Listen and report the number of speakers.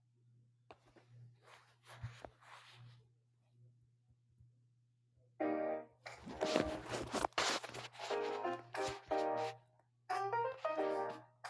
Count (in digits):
0